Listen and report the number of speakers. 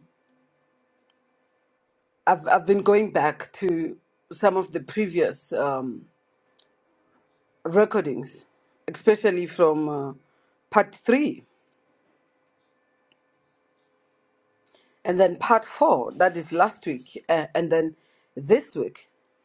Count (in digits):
1